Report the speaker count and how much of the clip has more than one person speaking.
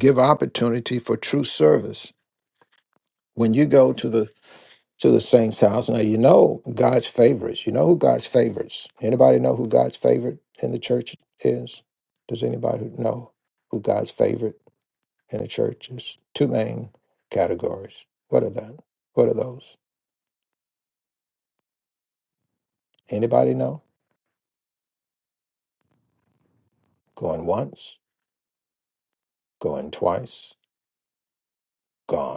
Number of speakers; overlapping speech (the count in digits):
1, no overlap